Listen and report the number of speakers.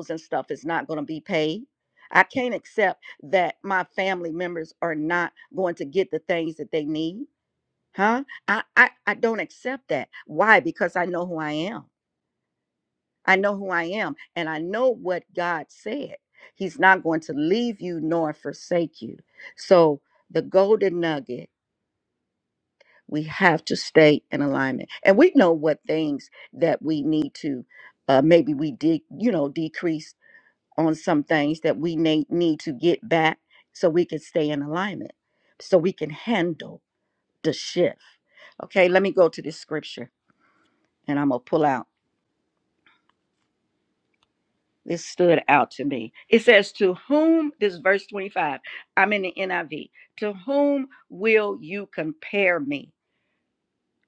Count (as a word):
one